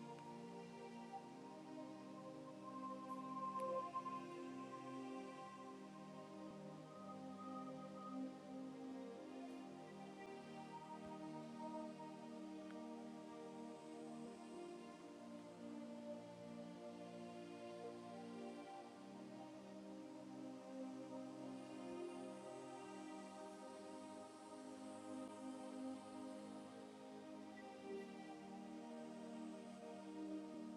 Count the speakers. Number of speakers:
zero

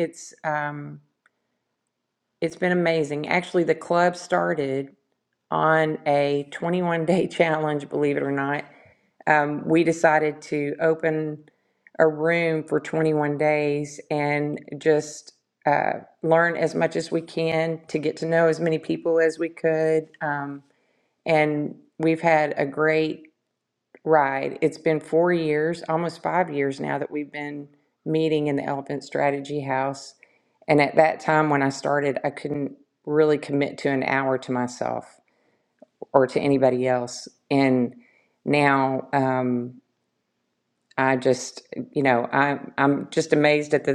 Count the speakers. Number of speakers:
one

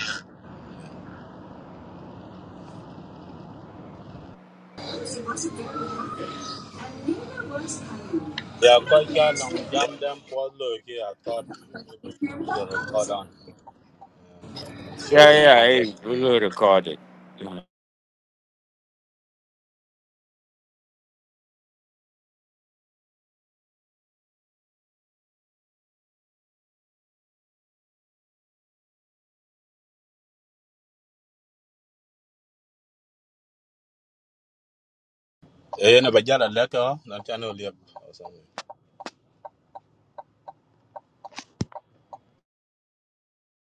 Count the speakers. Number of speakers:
three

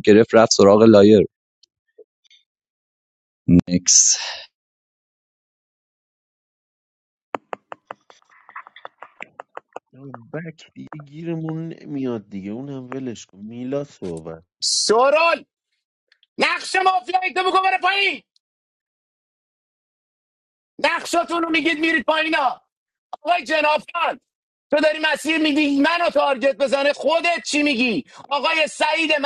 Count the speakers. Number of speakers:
three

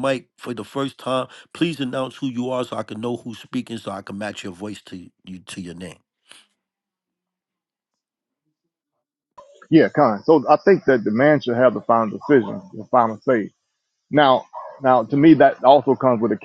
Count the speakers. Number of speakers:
two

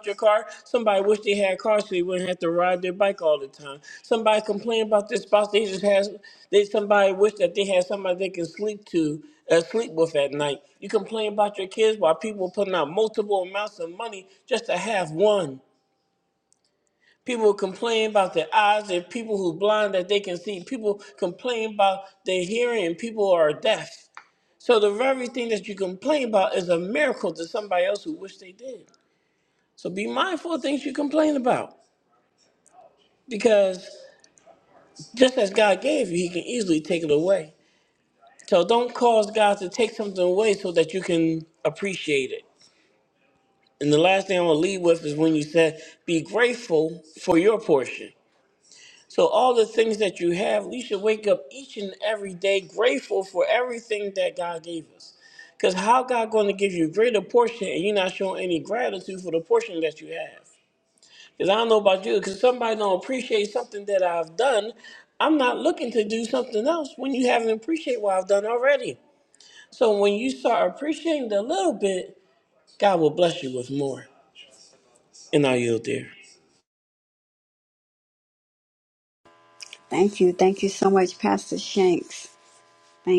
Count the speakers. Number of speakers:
two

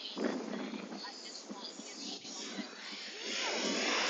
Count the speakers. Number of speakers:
zero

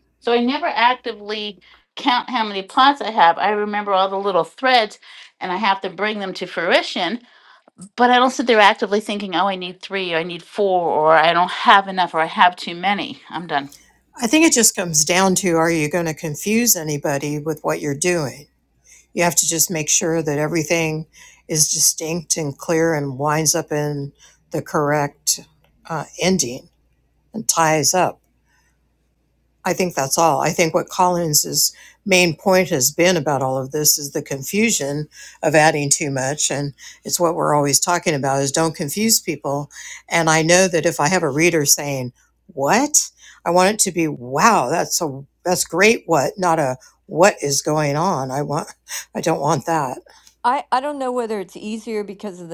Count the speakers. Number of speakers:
three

